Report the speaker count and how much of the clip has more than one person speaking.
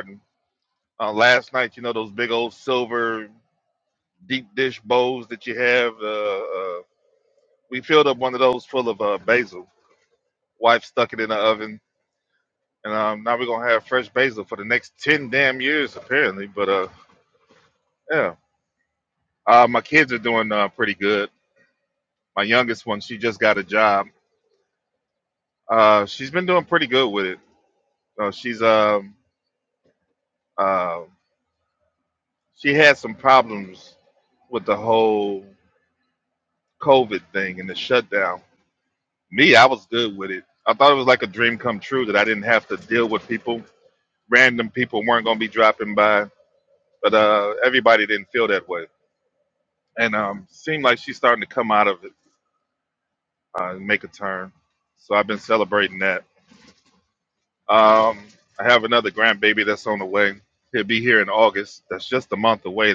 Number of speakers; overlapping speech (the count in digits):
1, no overlap